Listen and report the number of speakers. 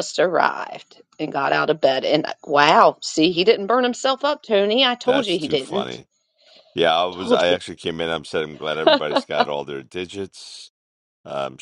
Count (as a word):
two